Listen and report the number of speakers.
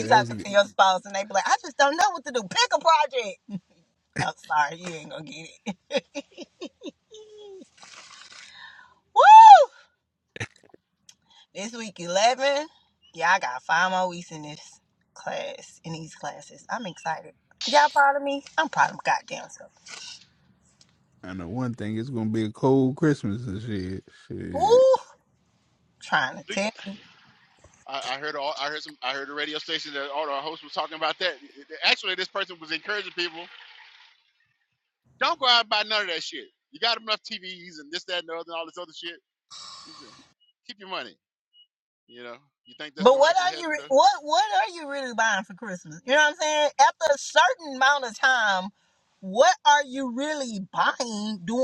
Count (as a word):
three